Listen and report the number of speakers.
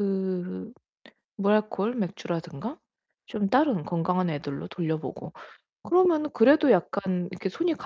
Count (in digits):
1